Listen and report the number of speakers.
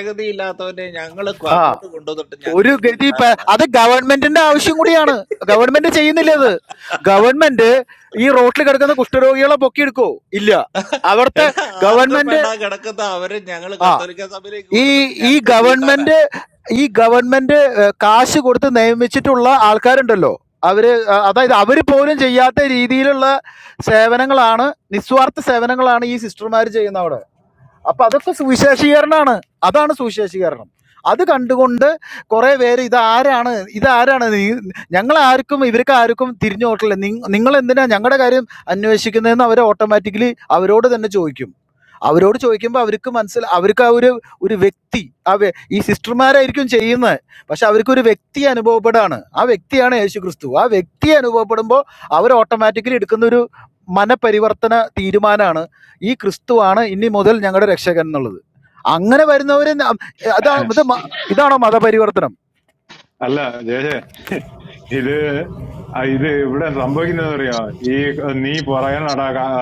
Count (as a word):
three